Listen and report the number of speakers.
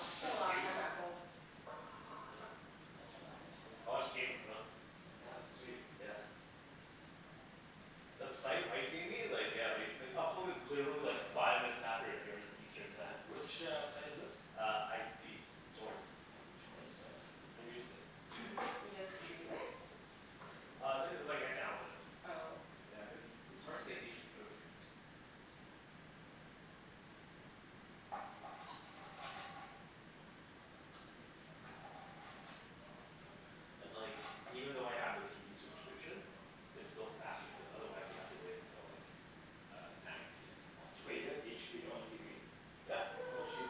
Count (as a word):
three